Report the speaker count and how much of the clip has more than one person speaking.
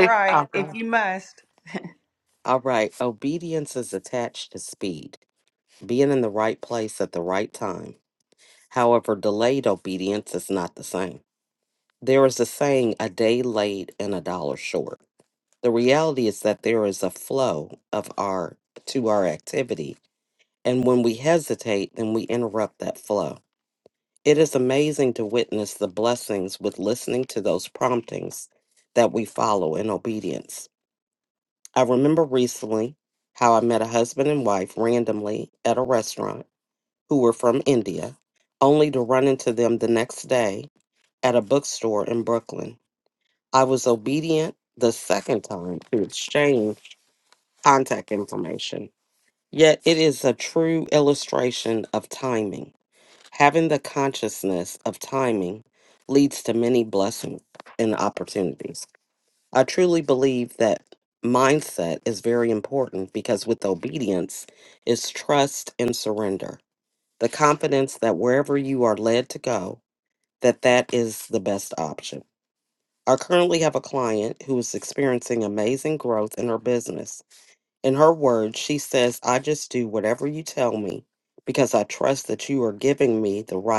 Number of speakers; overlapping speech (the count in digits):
2, about 1%